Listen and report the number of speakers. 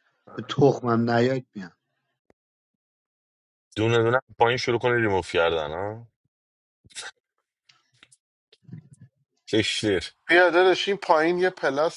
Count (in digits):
3